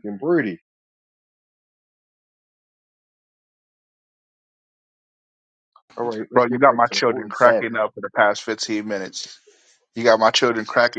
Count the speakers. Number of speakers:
2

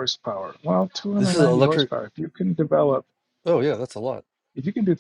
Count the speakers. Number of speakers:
2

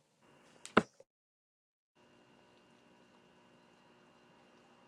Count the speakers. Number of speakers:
0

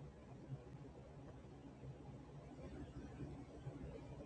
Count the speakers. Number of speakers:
0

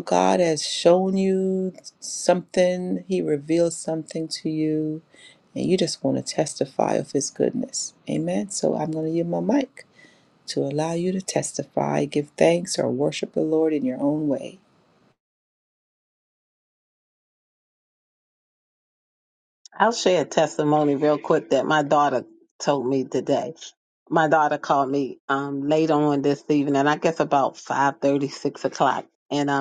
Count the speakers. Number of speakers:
2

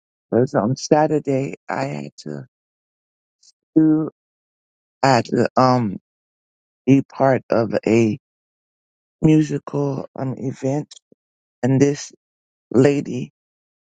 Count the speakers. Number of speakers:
1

